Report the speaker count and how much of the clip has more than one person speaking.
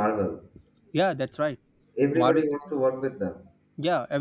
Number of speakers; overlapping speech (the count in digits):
2, about 8%